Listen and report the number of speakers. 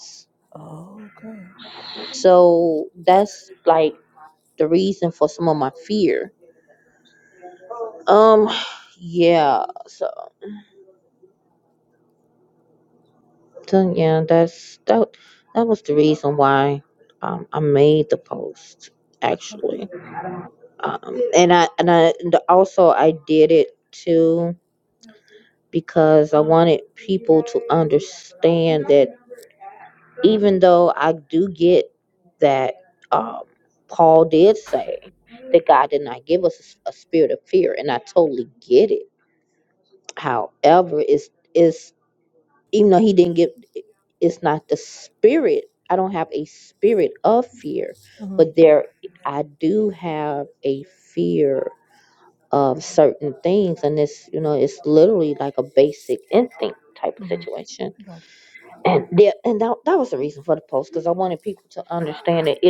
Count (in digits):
2